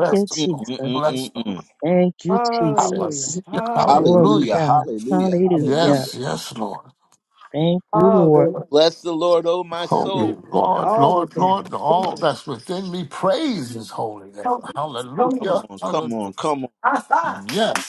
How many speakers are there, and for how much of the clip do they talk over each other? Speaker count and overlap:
four, about 55%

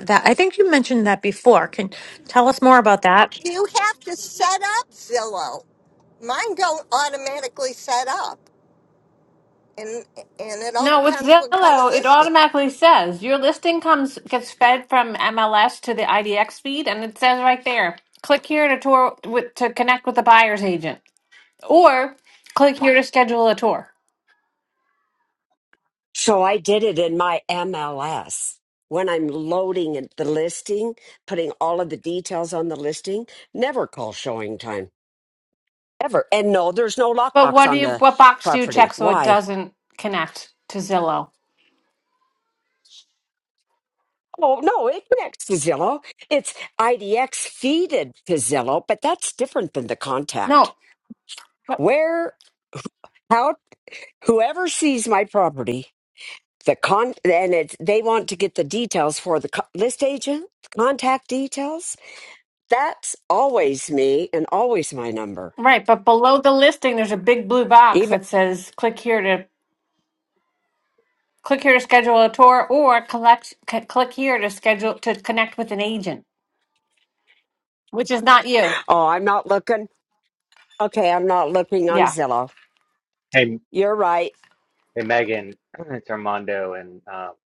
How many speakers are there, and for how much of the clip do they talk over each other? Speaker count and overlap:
five, about 4%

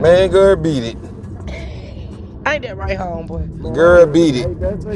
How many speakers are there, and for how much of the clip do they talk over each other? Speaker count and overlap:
three, about 20%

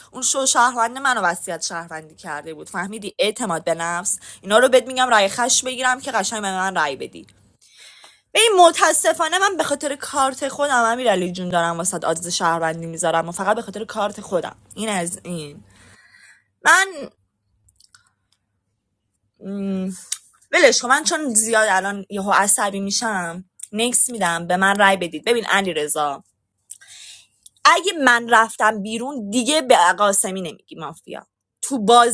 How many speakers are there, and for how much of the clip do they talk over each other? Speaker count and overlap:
one, no overlap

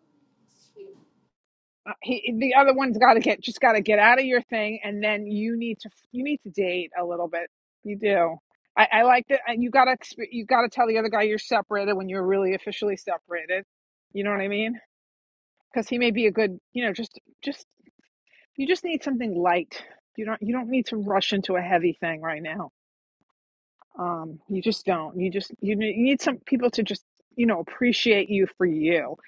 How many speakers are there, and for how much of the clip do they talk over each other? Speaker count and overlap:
one, no overlap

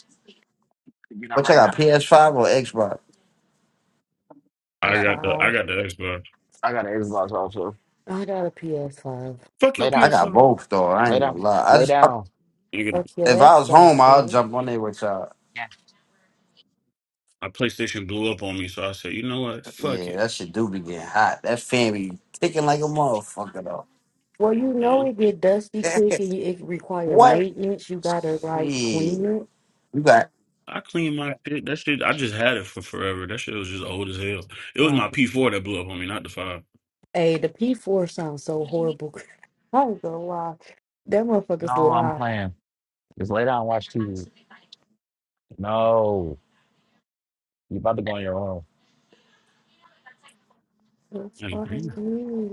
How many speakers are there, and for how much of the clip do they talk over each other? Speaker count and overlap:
four, about 14%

